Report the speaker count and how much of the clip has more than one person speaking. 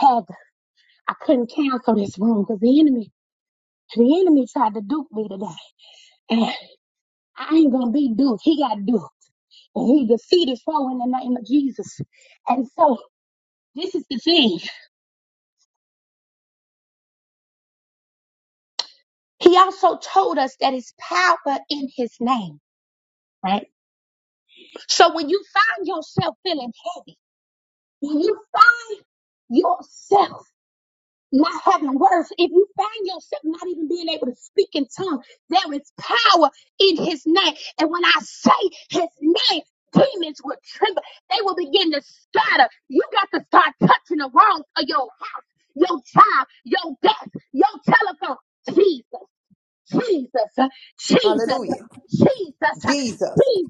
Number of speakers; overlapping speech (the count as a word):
two, about 2%